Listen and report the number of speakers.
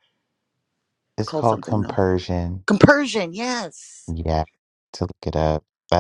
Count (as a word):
two